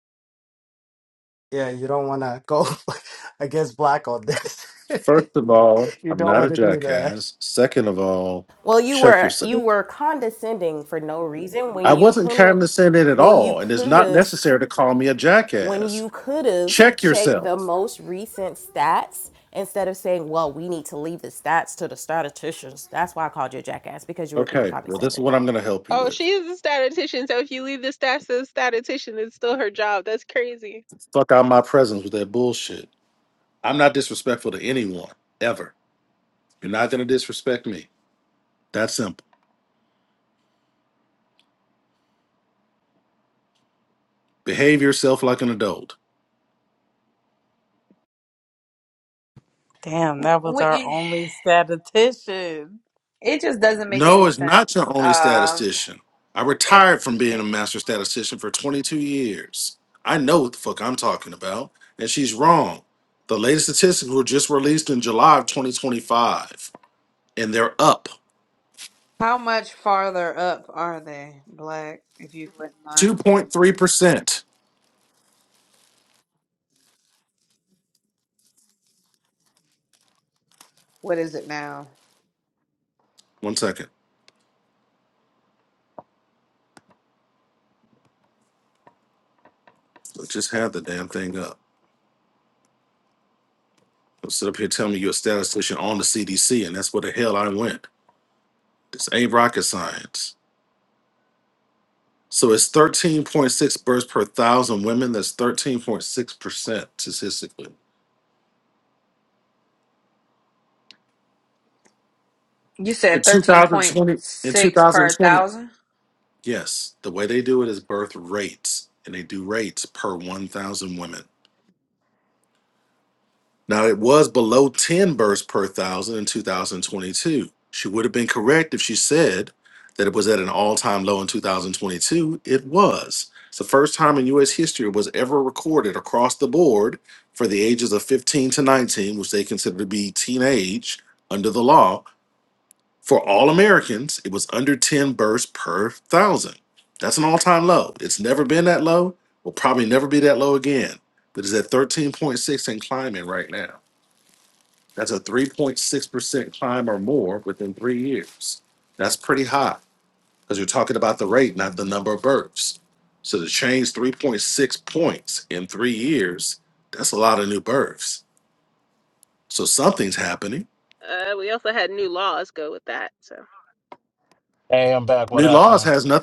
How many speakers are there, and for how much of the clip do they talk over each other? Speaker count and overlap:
seven, about 6%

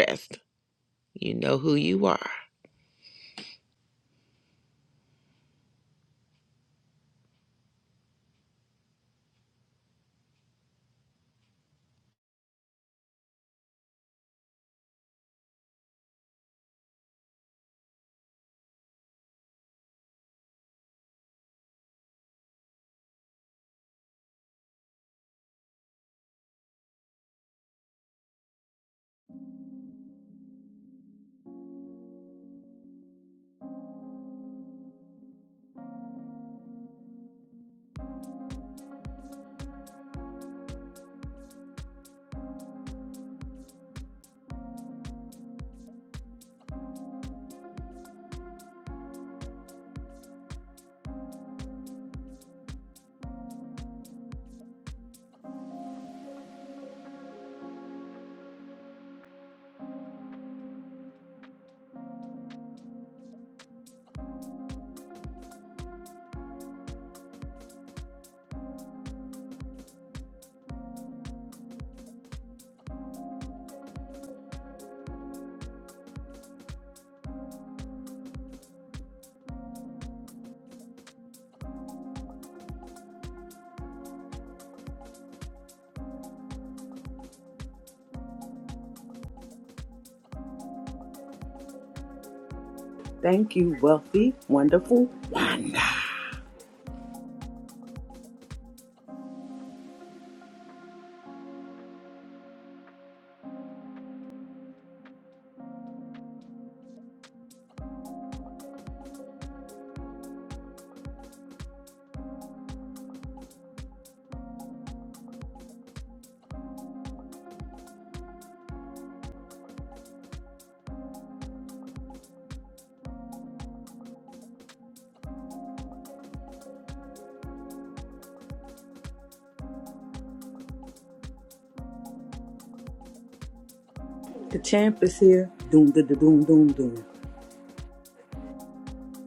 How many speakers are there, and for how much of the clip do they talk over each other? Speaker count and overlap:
two, no overlap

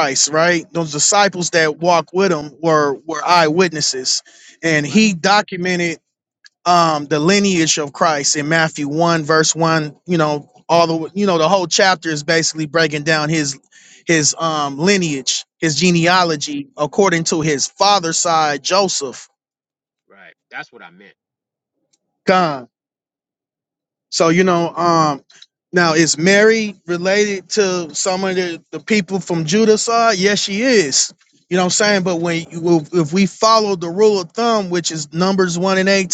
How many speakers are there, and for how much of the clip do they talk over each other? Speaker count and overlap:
two, about 1%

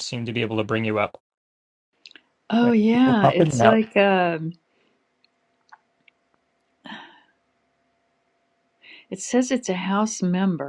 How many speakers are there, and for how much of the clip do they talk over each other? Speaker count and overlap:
two, about 11%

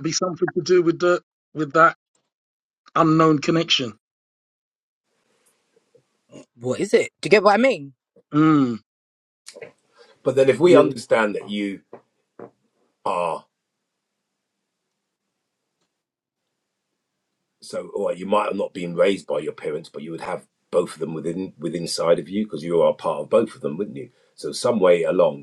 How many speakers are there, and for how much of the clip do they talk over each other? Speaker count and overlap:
three, about 1%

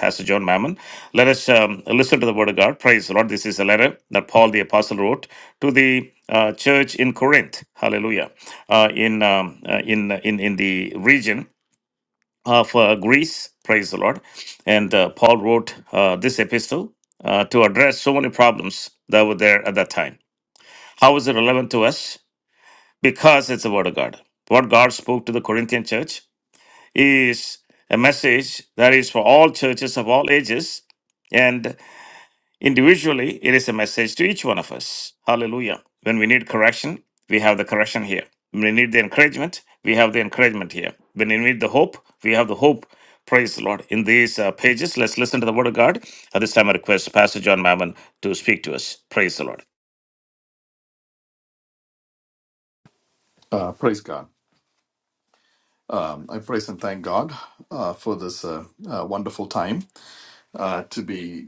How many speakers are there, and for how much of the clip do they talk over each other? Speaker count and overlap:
two, no overlap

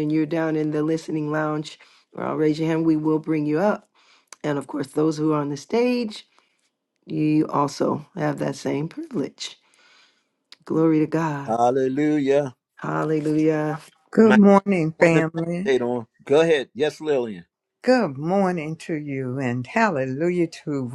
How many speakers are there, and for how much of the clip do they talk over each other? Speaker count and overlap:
three, about 2%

